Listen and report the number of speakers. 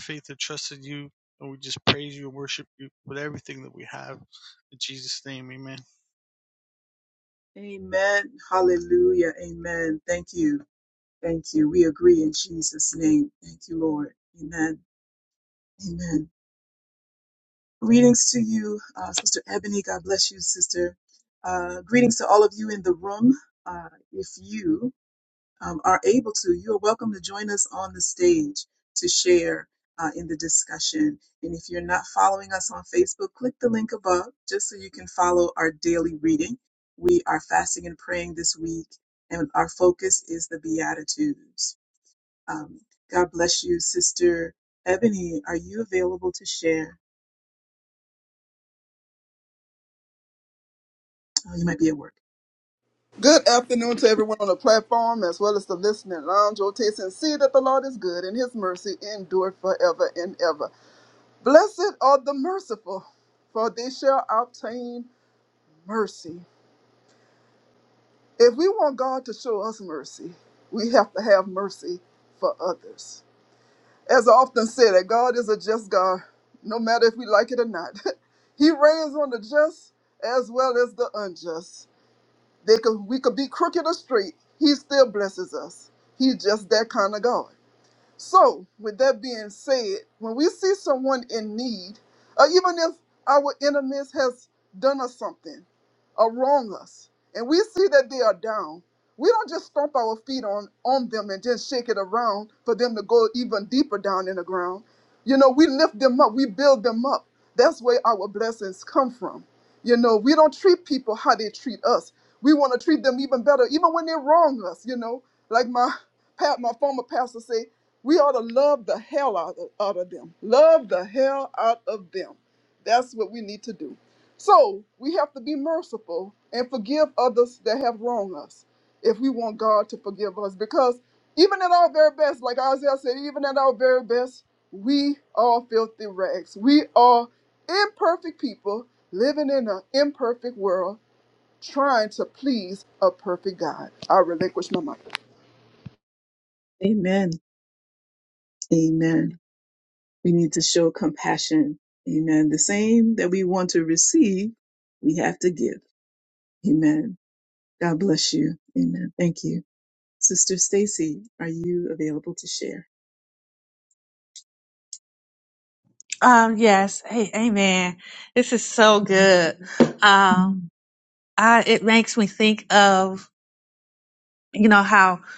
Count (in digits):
4